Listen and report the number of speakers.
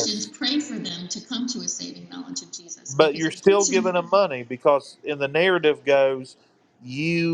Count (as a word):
two